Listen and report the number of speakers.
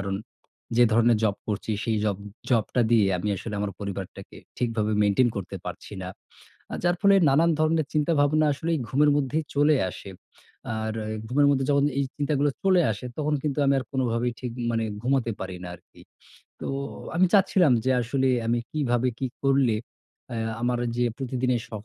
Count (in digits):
1